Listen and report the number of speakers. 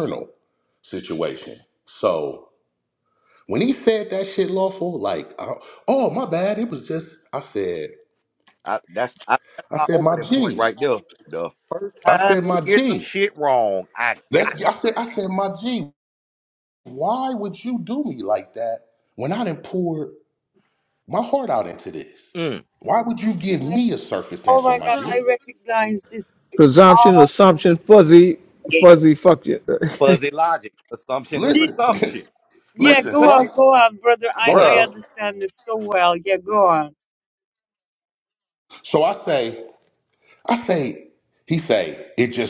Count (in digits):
4